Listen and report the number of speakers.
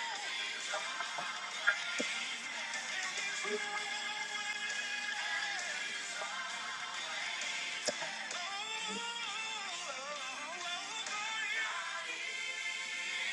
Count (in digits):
0